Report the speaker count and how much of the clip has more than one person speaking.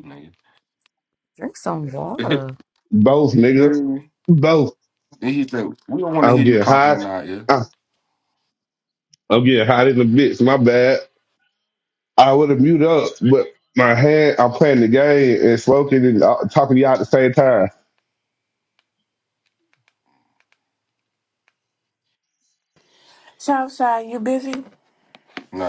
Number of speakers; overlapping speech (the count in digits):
4, about 5%